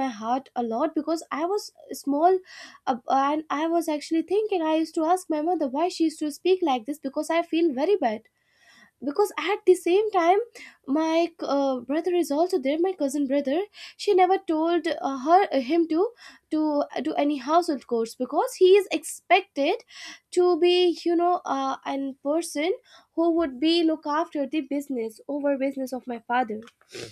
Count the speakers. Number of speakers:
1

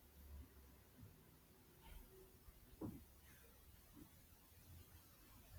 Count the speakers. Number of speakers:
0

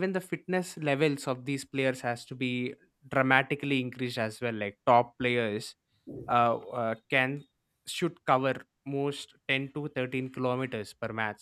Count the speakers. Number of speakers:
1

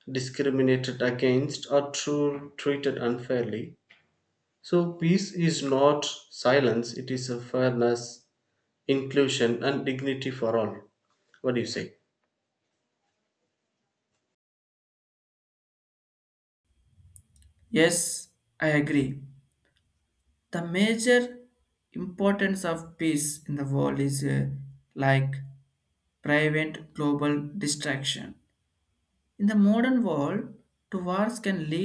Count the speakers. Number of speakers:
2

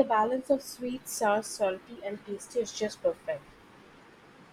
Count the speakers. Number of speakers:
1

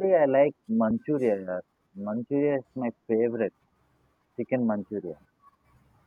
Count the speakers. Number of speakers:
1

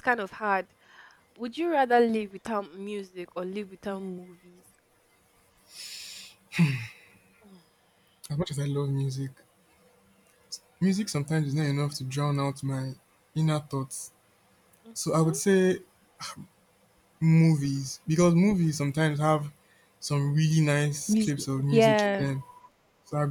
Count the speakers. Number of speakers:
2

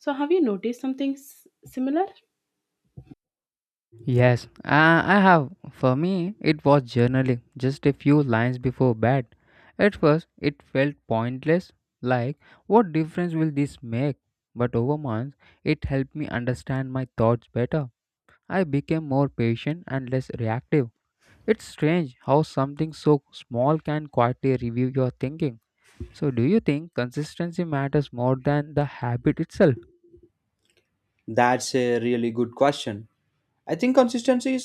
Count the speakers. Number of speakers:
3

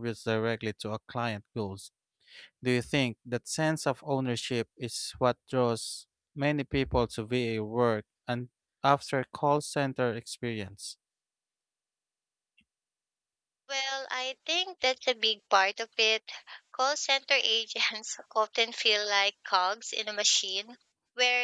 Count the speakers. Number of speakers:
2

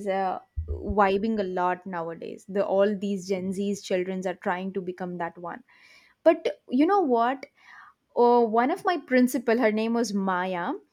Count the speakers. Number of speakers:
1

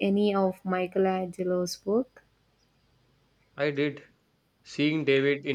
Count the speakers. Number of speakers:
2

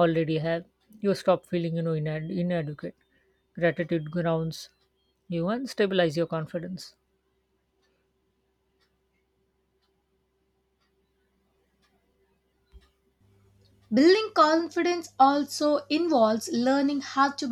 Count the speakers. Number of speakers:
2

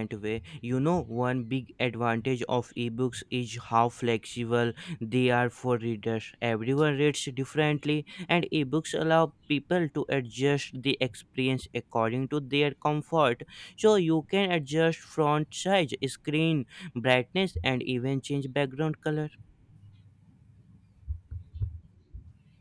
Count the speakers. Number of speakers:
1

